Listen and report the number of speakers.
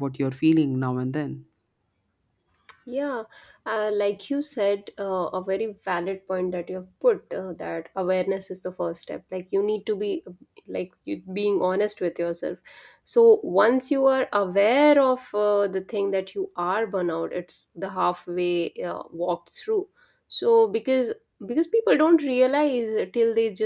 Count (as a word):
two